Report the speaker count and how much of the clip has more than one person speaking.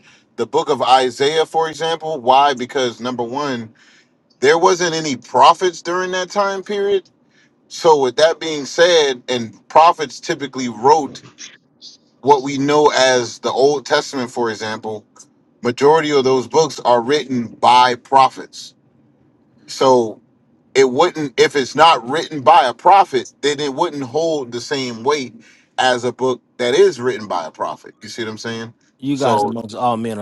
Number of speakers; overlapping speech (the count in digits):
2, about 1%